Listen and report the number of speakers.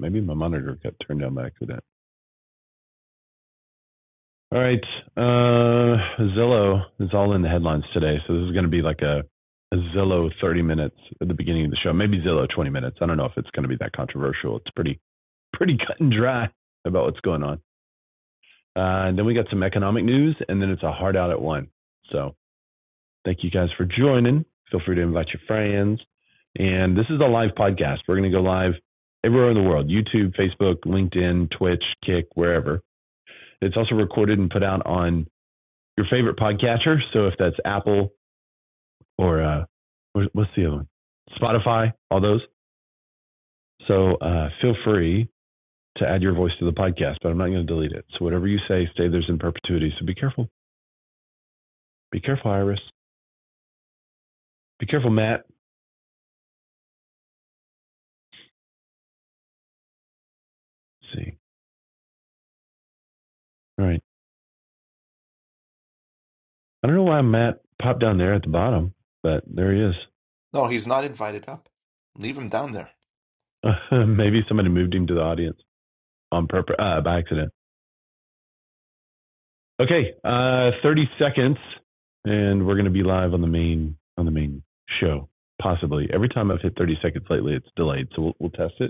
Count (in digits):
2